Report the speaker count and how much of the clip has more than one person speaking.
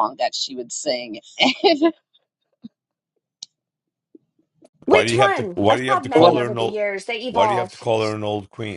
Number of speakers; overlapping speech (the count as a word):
three, about 26%